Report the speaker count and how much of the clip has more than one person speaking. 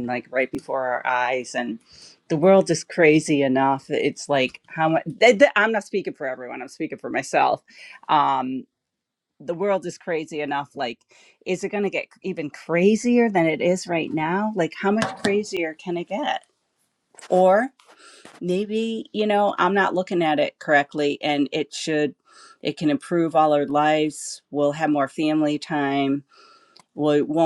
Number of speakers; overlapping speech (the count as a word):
one, no overlap